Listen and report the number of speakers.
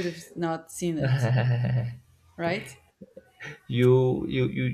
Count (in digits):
2